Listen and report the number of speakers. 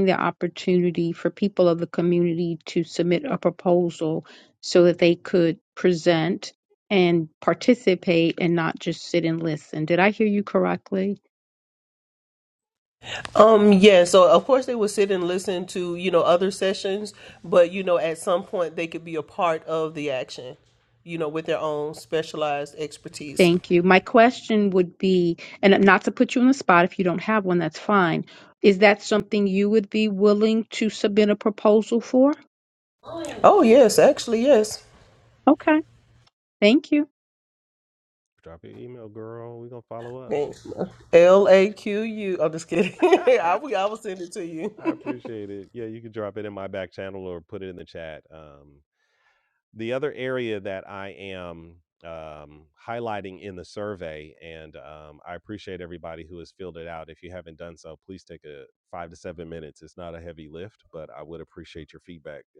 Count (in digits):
3